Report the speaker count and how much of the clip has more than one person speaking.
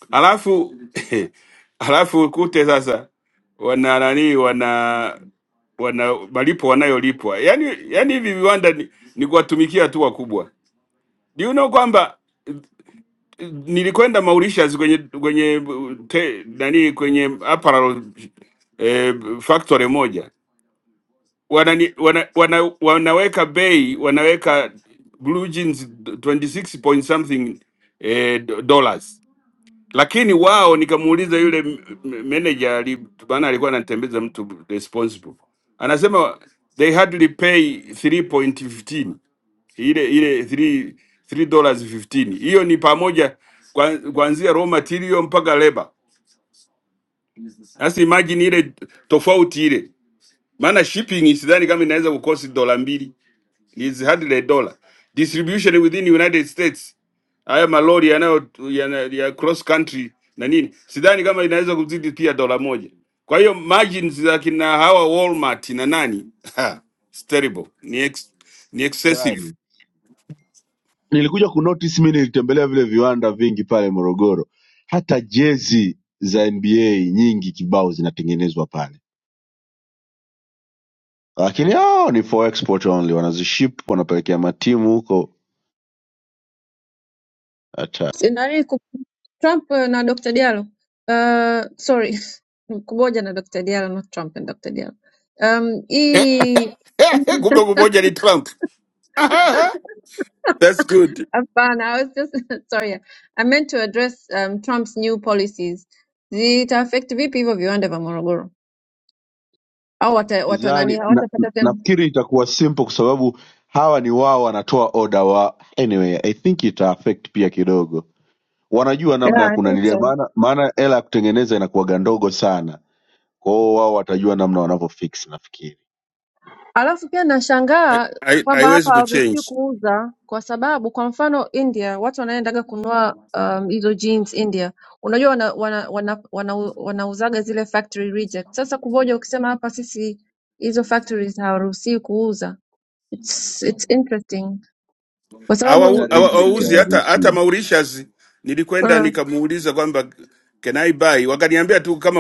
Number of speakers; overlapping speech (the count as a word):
three, about 4%